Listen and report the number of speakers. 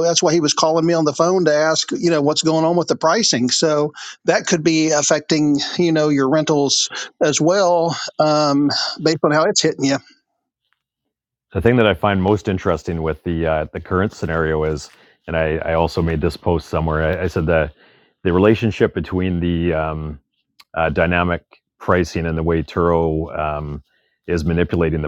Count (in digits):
2